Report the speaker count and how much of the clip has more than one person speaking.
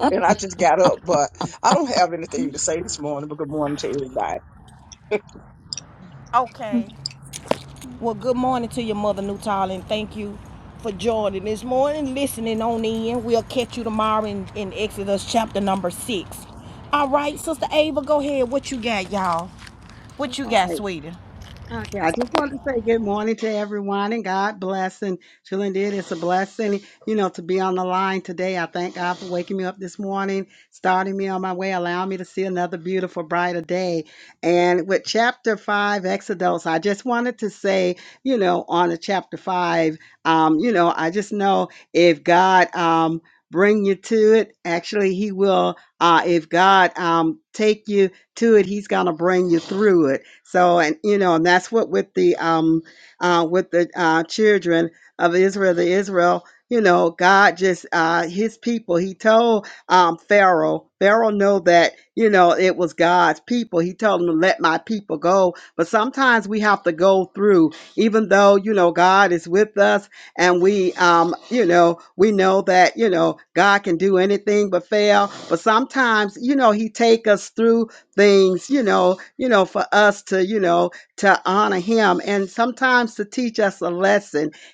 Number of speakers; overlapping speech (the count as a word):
three, about 1%